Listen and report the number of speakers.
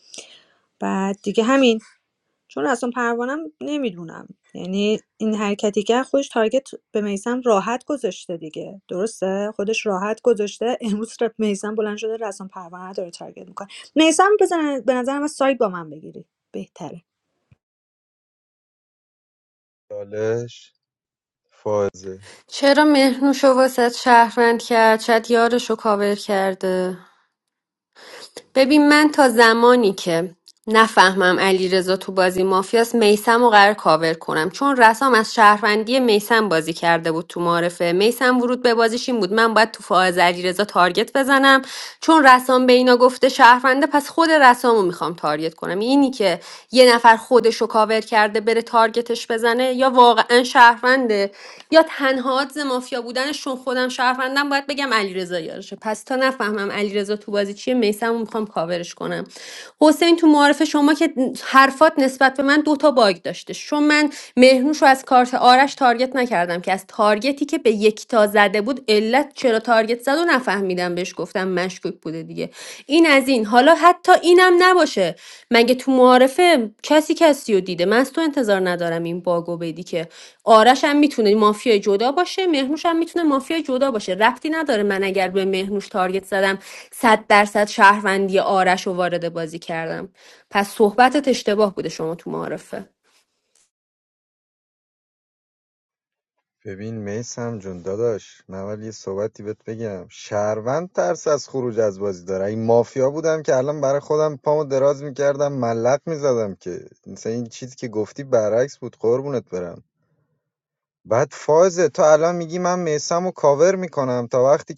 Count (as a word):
three